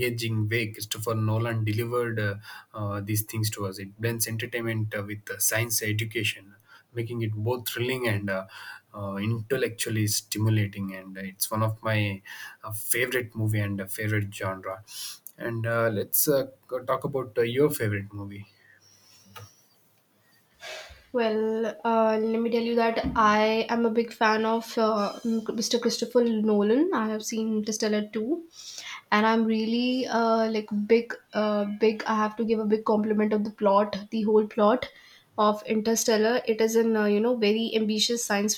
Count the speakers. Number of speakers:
2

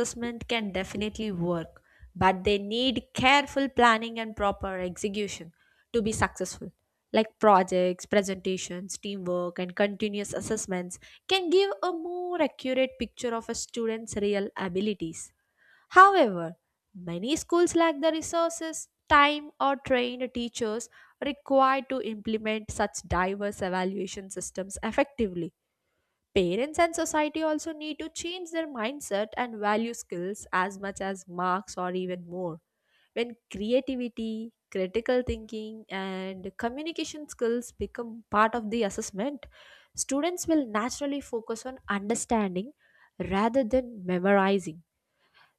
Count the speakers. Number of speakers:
1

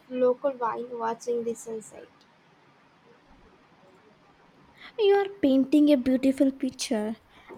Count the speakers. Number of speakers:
2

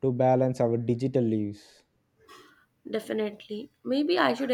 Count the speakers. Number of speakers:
2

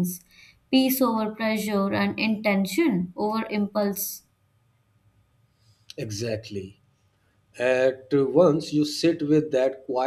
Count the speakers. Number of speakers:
2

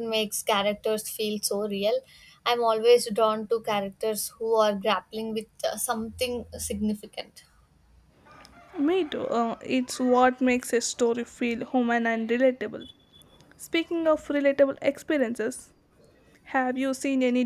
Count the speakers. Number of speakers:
2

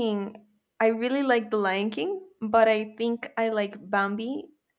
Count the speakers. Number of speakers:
1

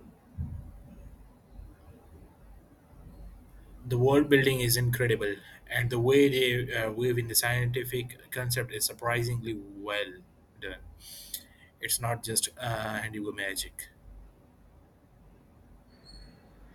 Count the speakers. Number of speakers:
1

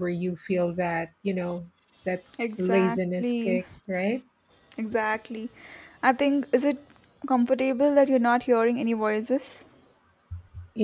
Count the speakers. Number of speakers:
2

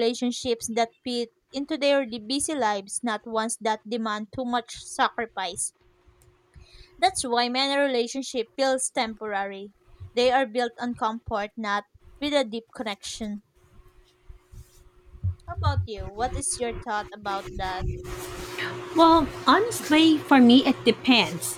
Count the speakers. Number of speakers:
2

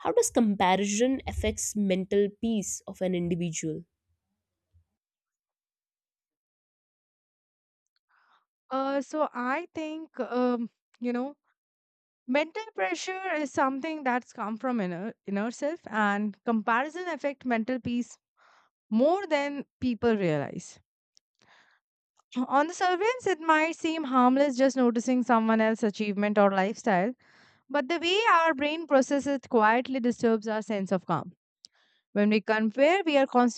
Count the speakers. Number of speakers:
2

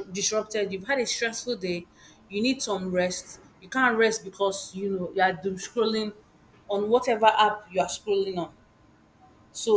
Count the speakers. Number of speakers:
1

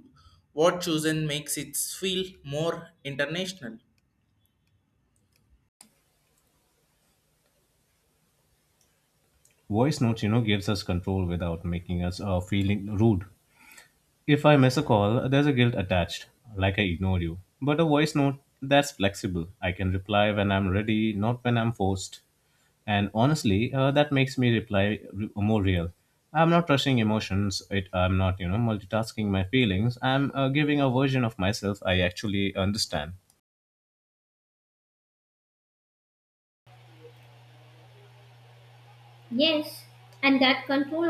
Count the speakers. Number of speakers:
3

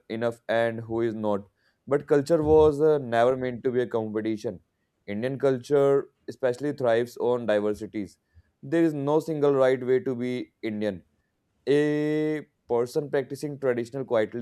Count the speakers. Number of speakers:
1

